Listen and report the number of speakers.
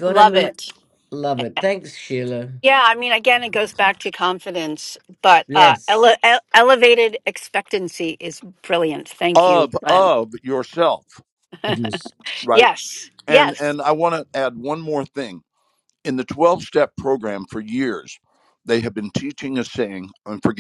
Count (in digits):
3